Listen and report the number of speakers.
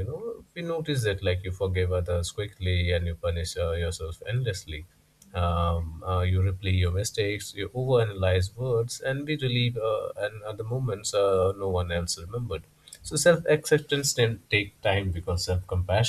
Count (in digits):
1